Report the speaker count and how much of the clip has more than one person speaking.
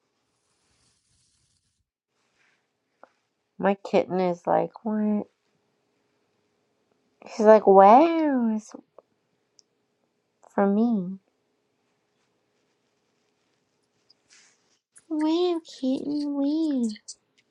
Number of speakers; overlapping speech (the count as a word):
one, no overlap